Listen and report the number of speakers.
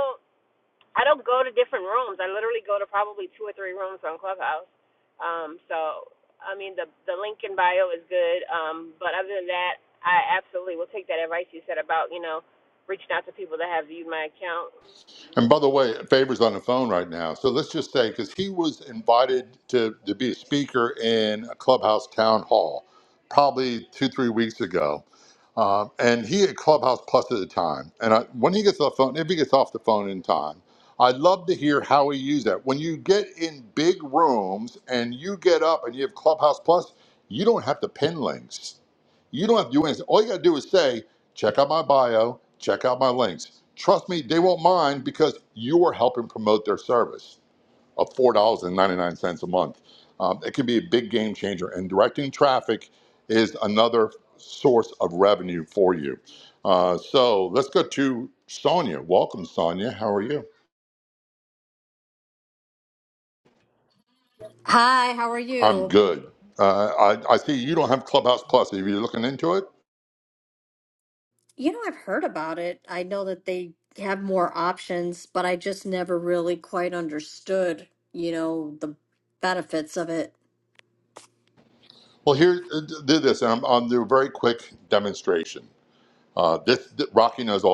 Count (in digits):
3